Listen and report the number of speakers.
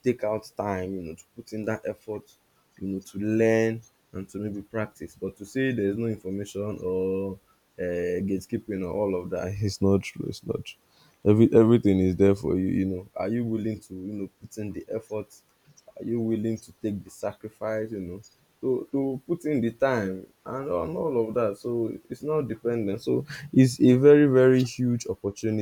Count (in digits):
1